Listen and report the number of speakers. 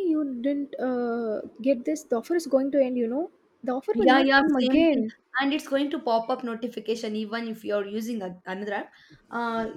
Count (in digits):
2